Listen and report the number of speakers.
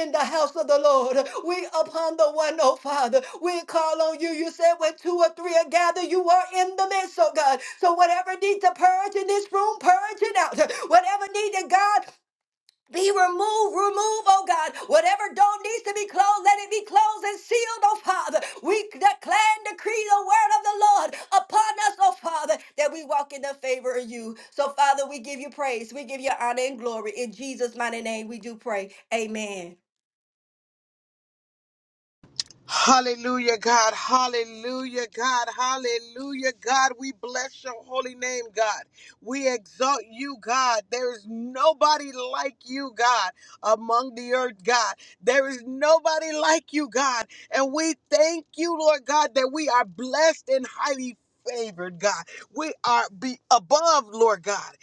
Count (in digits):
2